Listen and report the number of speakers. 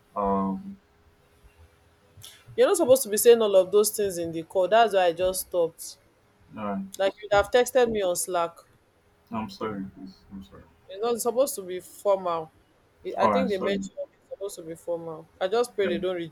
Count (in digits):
2